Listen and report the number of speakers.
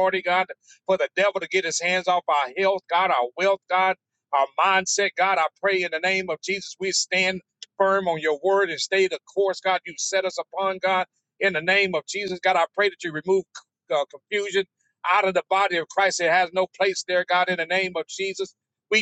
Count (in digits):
1